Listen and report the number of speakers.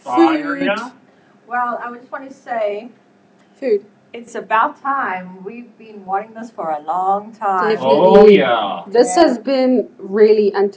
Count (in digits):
3